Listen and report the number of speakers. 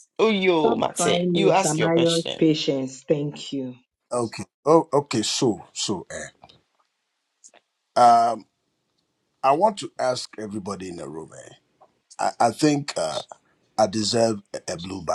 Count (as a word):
three